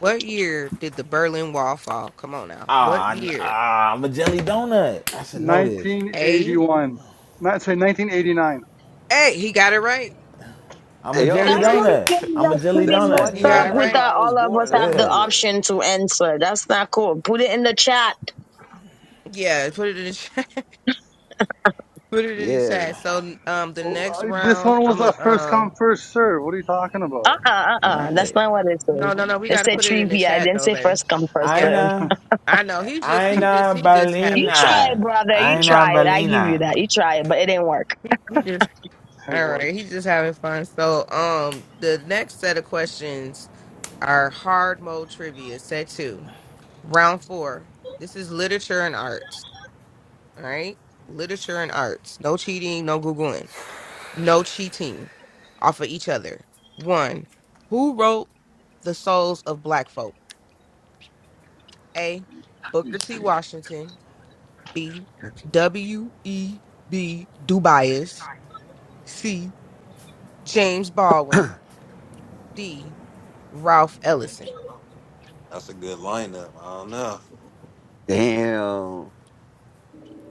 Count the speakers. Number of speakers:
six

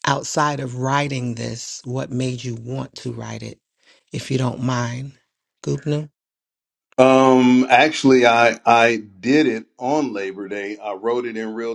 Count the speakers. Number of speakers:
two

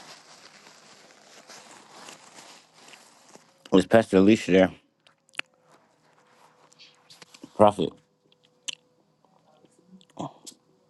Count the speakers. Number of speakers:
one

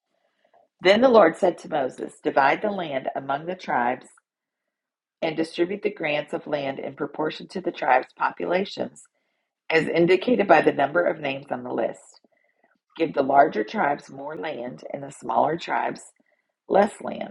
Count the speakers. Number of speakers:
one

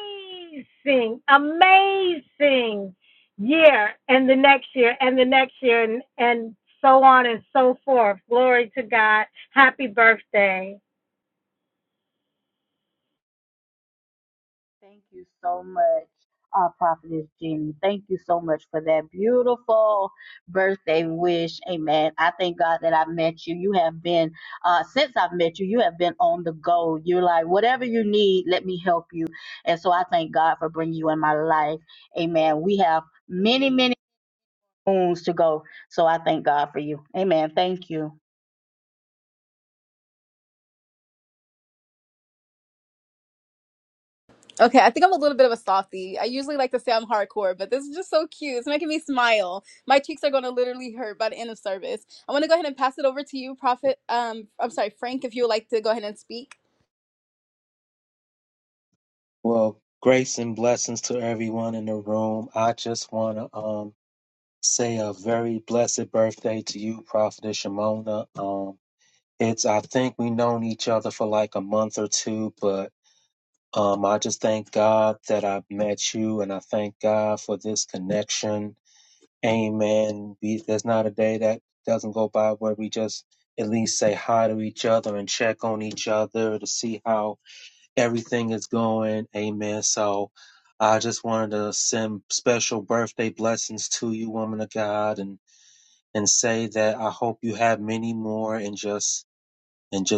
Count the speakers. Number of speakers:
four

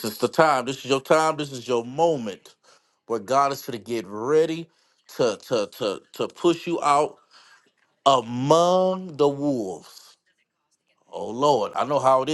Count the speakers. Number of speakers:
one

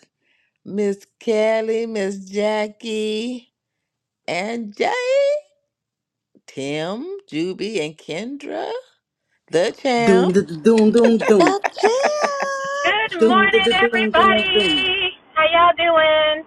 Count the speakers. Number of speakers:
four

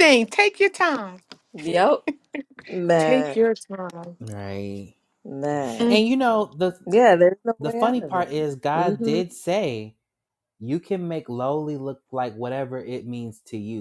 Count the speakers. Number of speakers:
three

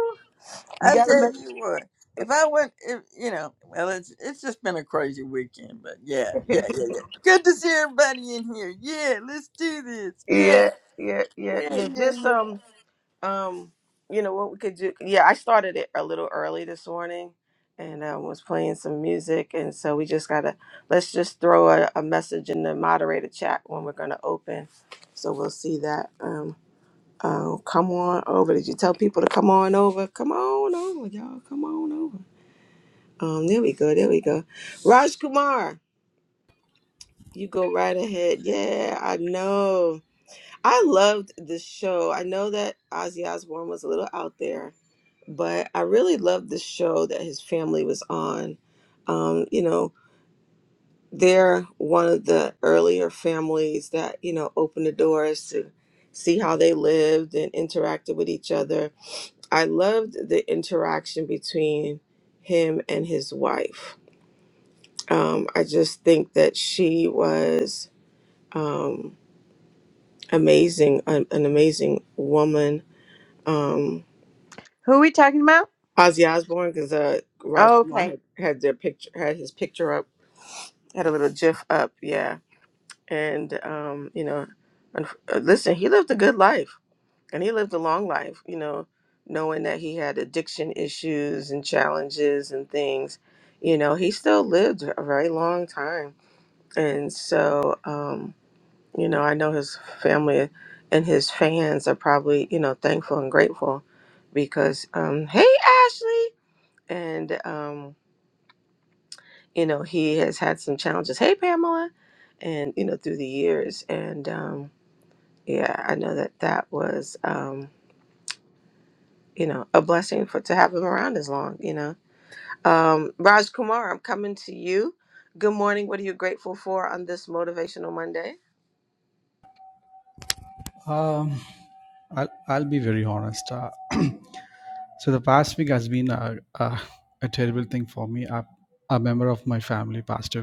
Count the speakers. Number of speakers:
four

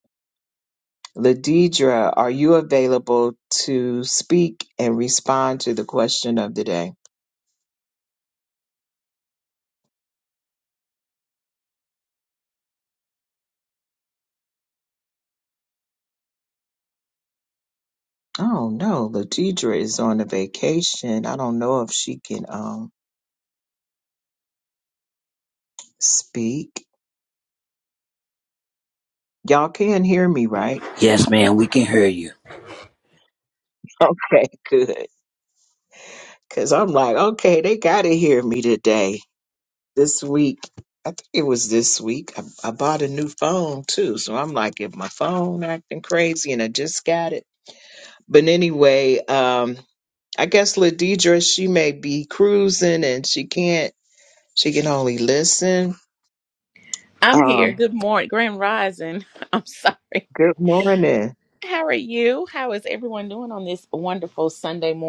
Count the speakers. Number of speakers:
three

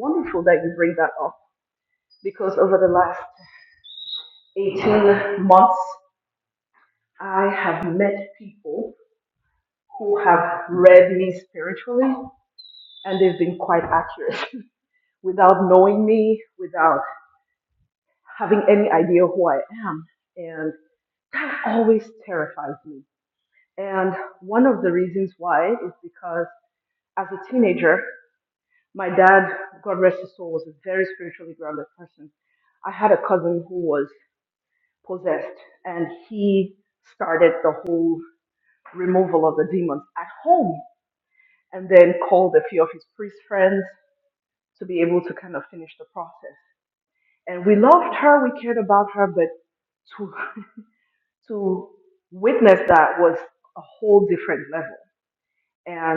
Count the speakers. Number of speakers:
one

